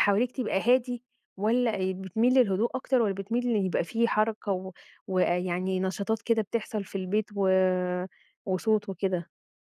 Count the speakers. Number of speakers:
one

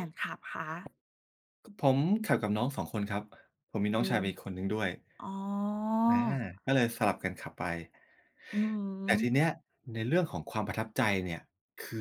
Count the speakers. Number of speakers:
two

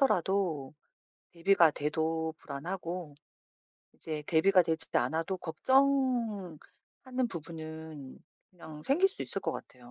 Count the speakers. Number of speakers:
one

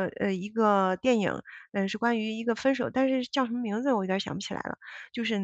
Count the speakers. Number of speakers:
one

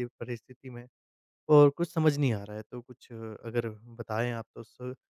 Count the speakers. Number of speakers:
one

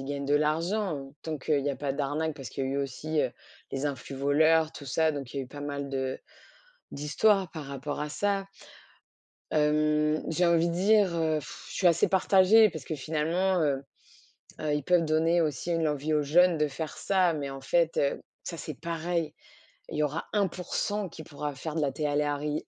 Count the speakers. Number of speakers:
one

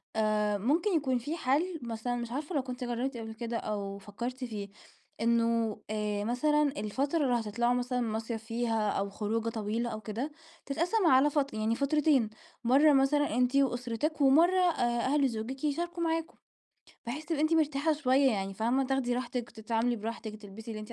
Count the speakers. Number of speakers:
one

